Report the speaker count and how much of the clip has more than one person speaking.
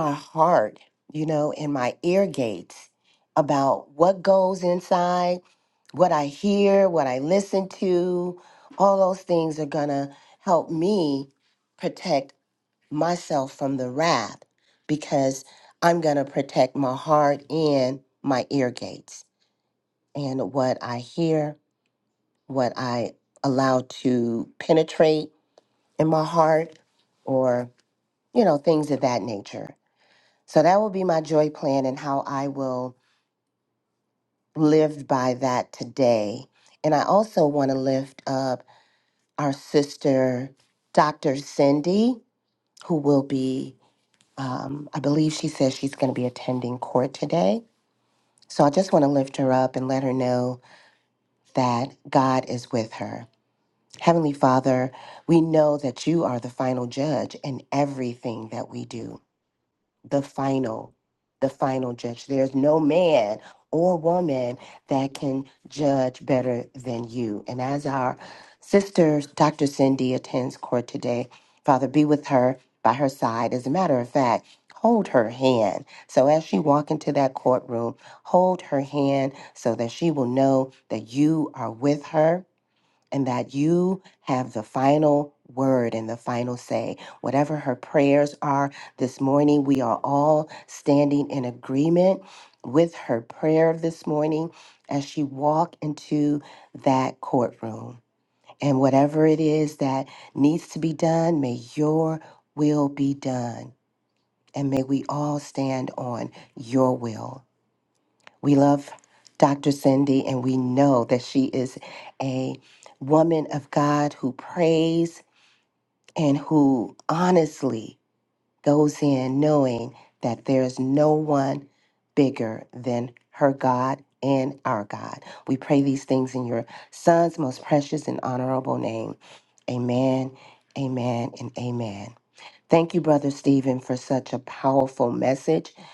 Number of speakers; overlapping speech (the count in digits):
1, no overlap